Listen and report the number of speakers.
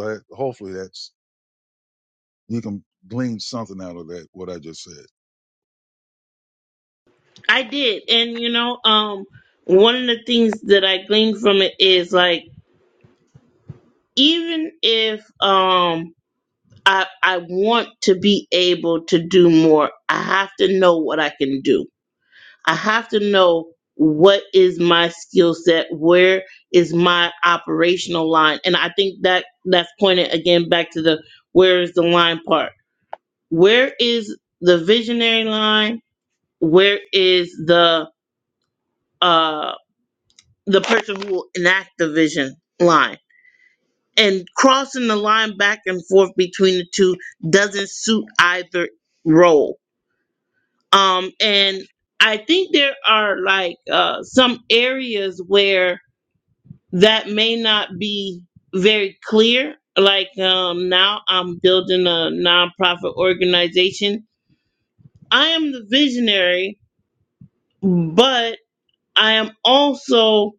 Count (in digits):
2